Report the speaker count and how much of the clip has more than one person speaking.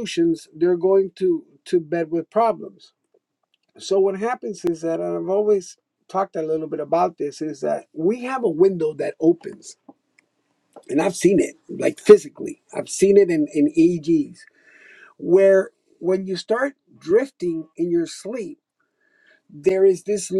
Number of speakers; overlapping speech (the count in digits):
1, no overlap